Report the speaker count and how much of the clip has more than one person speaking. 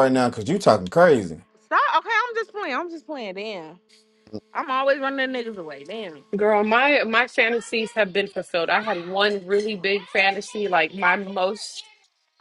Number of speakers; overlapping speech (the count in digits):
3, no overlap